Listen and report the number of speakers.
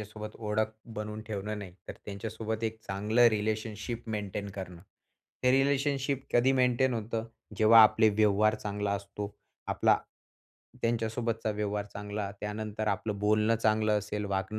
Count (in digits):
1